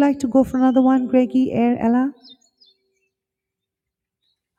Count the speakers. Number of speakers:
1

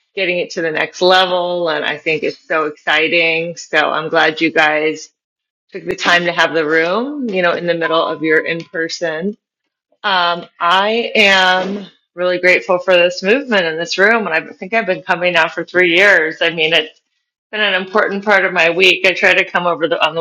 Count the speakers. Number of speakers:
1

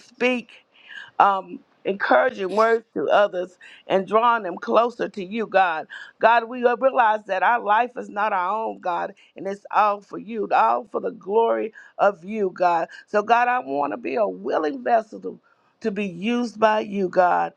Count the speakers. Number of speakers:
1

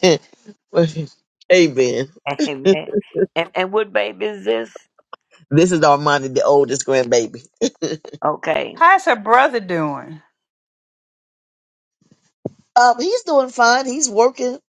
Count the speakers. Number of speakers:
3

